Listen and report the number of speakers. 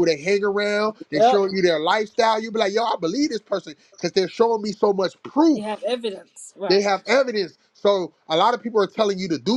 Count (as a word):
two